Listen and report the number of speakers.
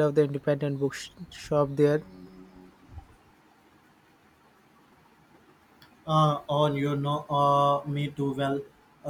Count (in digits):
2